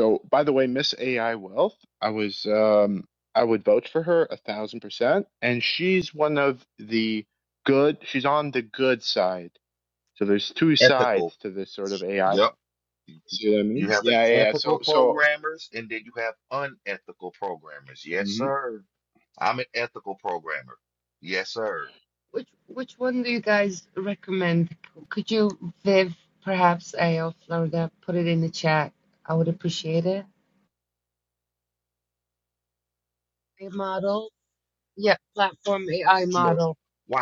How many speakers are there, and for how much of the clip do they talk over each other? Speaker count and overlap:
3, about 7%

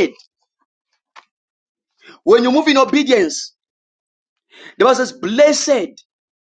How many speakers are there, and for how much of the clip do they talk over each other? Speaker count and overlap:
1, no overlap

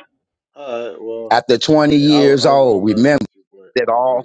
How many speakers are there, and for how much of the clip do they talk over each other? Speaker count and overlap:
2, about 46%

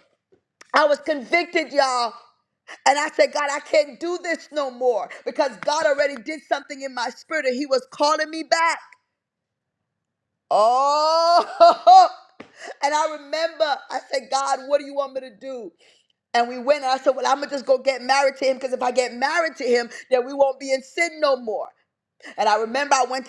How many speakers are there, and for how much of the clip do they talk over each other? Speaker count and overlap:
1, no overlap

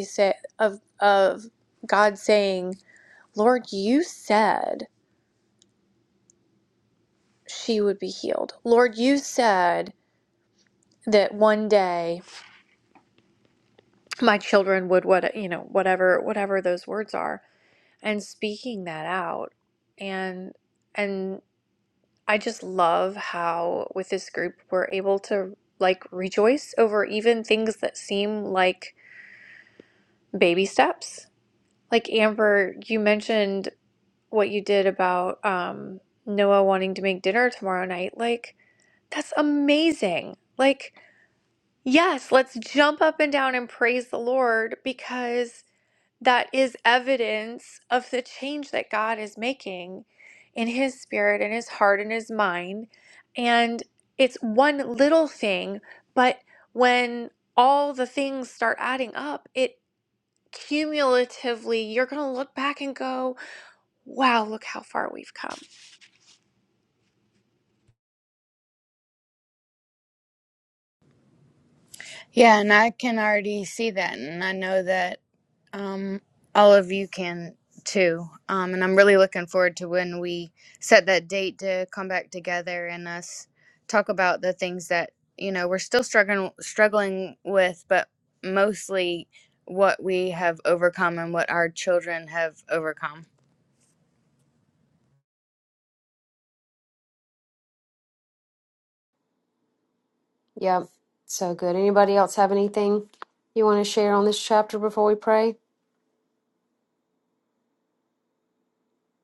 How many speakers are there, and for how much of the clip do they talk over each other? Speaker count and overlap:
3, no overlap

